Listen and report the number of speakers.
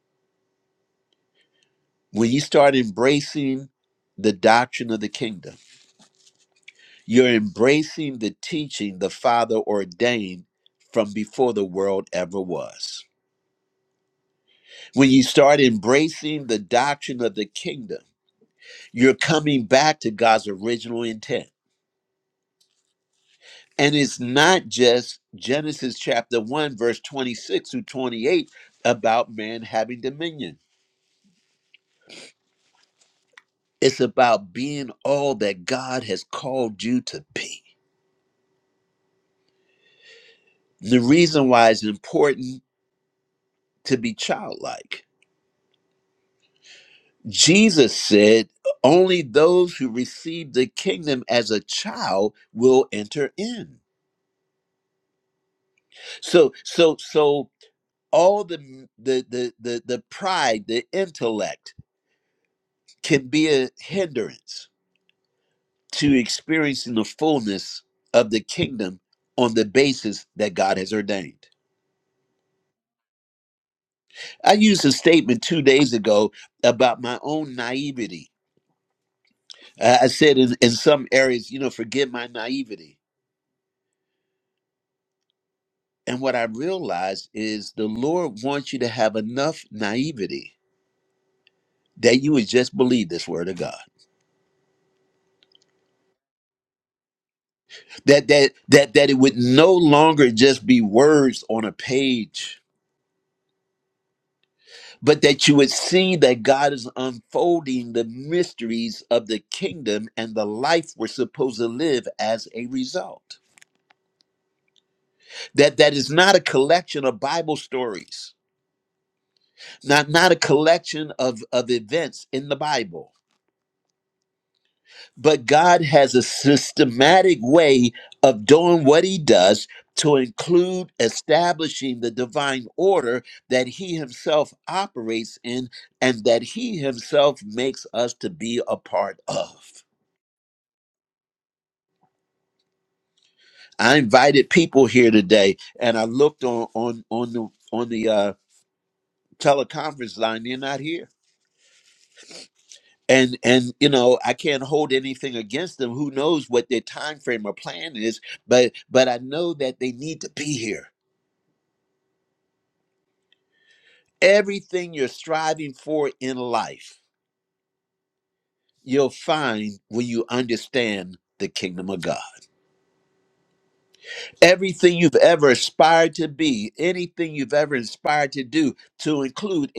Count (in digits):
1